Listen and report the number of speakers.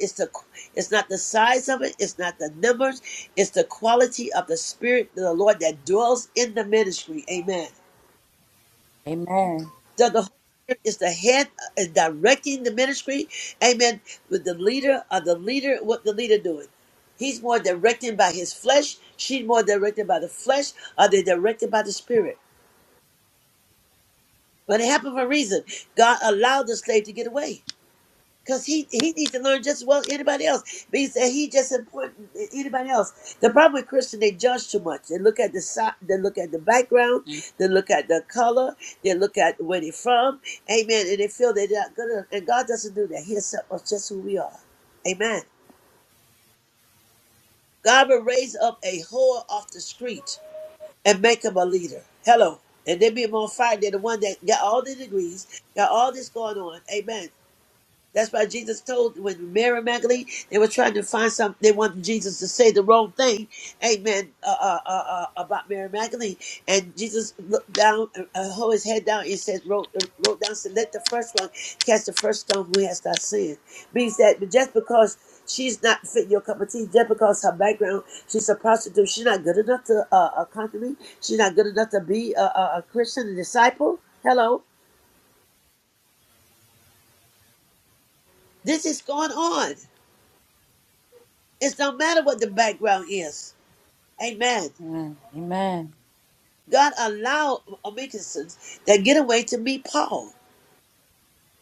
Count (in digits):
2